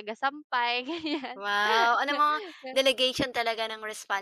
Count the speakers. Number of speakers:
two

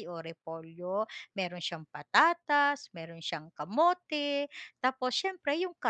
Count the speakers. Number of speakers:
one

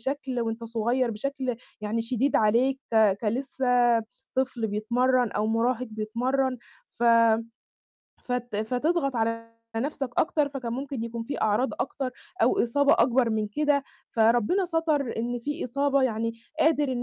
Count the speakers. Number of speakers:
one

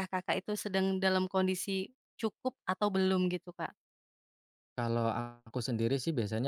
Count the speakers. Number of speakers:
two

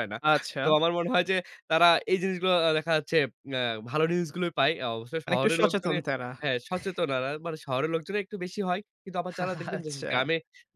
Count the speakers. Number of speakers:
two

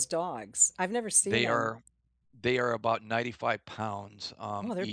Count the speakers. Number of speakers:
two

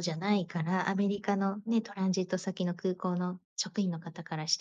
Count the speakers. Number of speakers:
one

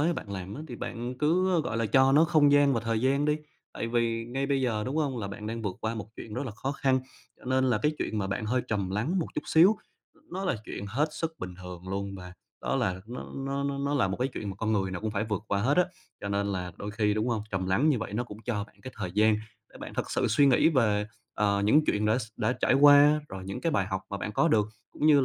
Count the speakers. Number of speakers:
one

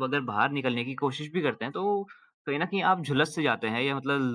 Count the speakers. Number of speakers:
one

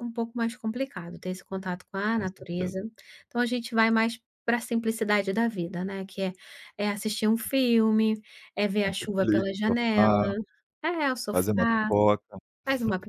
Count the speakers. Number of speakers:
two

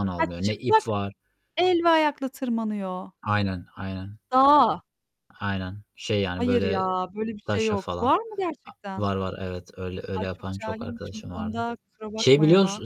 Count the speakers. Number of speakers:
two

